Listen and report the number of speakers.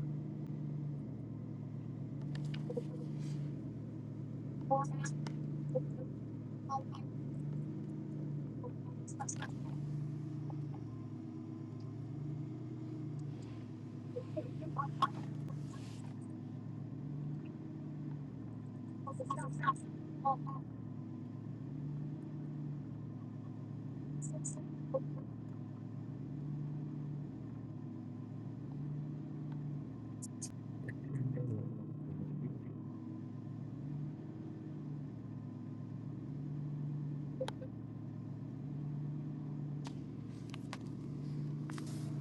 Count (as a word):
zero